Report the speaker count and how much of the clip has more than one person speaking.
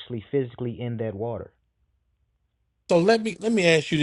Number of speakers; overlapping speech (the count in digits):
2, no overlap